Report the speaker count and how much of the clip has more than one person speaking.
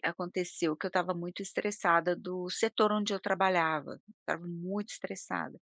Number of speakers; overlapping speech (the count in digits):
1, no overlap